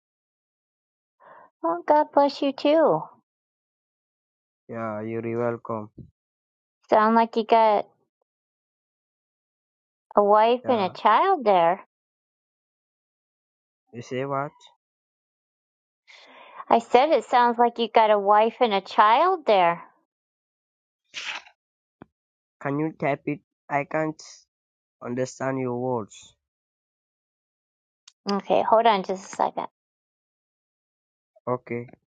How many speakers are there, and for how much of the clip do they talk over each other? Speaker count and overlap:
two, about 1%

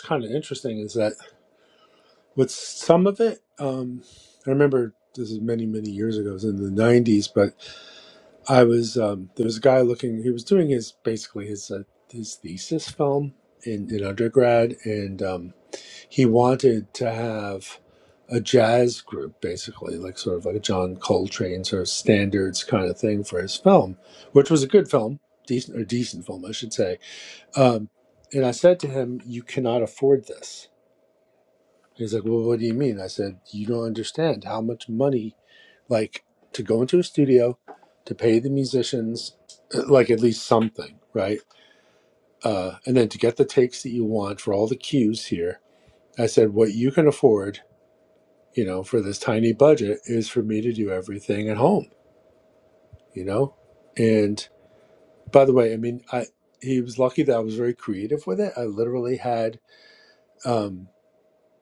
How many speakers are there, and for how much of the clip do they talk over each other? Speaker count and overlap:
one, no overlap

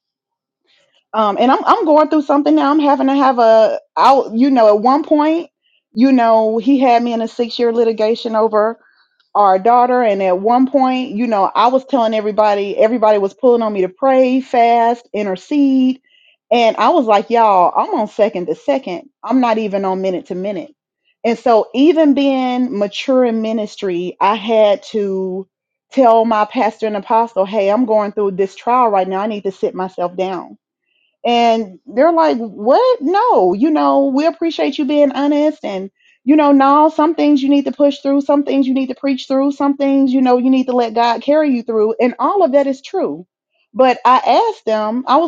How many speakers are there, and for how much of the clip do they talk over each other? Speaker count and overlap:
one, no overlap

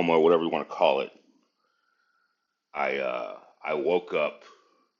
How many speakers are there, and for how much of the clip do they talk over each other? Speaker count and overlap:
one, no overlap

